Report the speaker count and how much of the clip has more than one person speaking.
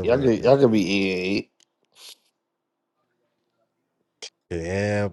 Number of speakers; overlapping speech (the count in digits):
2, about 10%